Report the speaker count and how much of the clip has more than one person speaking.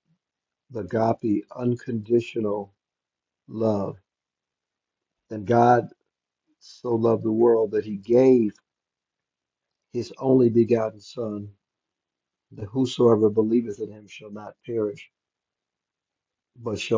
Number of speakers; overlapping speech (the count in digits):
1, no overlap